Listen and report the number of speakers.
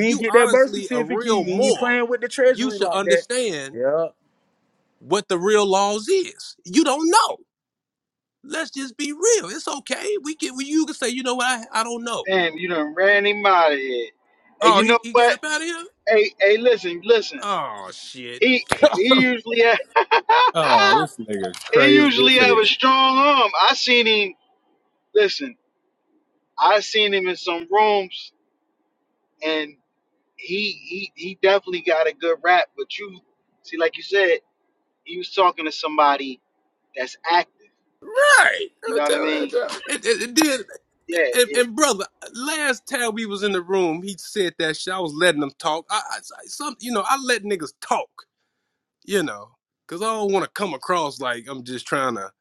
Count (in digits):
3